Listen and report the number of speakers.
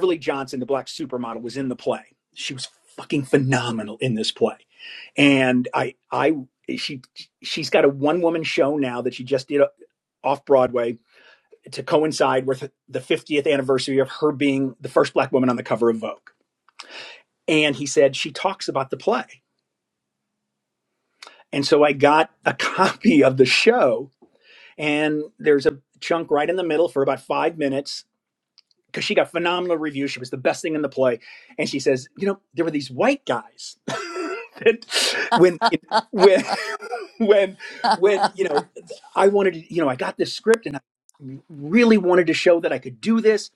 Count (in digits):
1